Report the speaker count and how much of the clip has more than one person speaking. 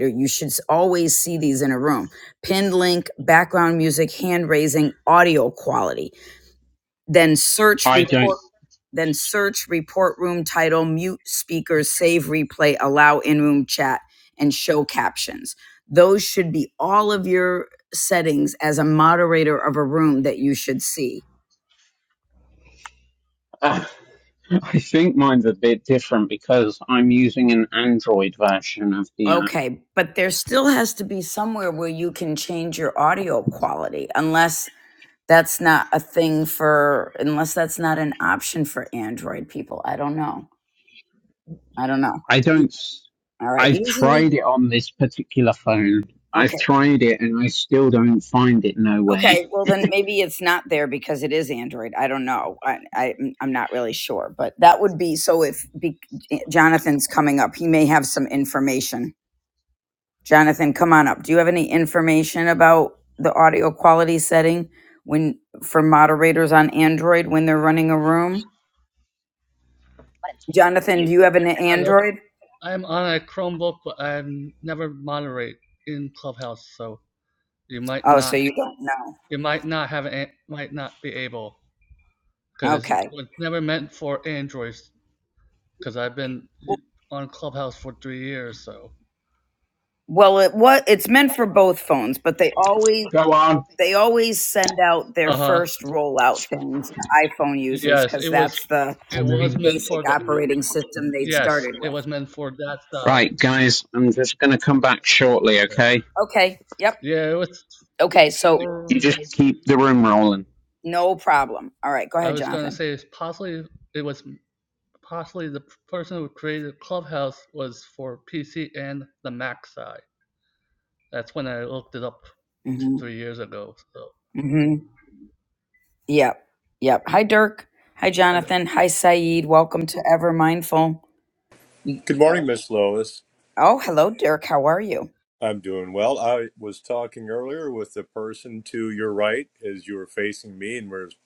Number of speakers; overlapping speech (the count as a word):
four, about 5%